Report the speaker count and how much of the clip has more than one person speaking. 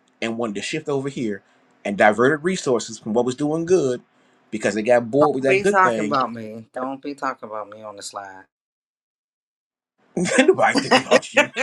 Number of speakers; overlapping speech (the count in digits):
2, about 6%